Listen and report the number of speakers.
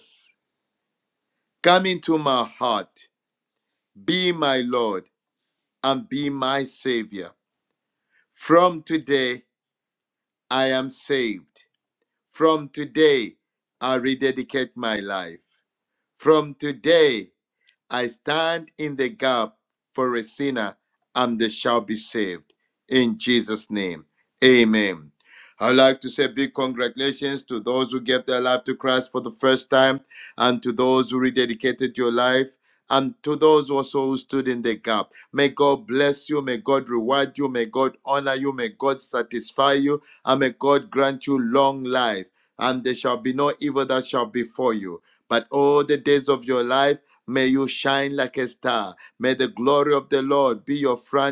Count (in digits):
1